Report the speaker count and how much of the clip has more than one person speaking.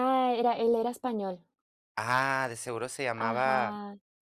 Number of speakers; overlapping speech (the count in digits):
2, about 14%